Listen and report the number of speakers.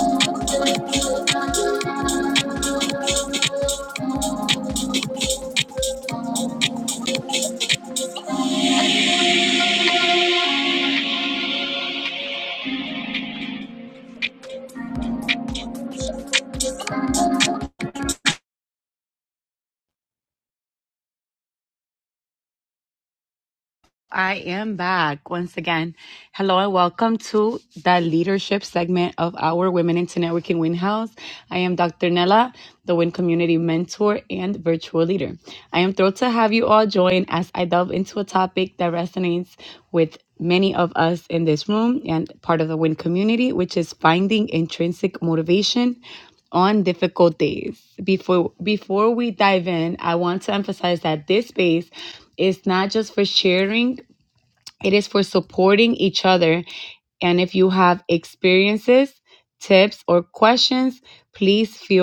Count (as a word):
one